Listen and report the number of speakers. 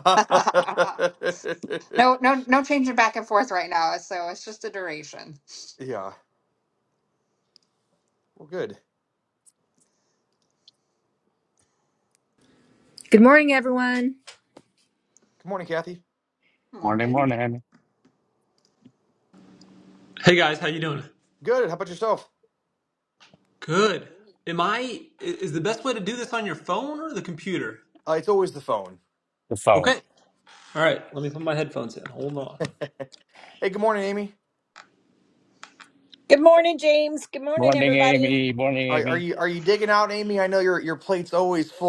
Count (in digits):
6